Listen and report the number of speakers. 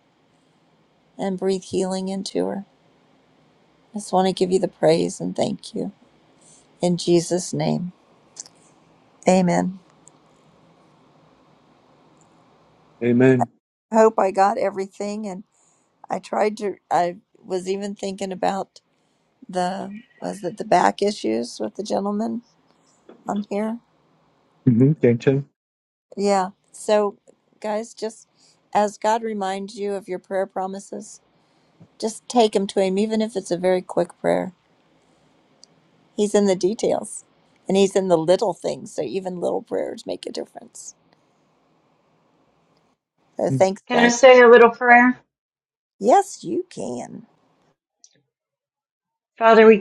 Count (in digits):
3